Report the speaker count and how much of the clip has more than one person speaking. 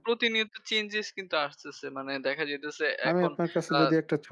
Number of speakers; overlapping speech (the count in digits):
2, about 11%